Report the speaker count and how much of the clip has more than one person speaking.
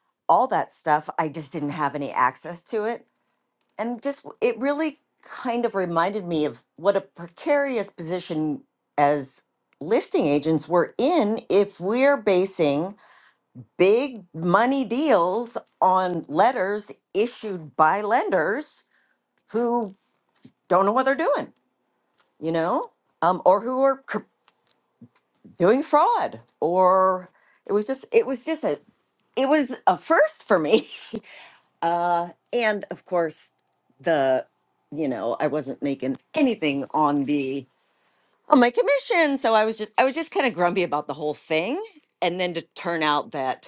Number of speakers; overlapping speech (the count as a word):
one, no overlap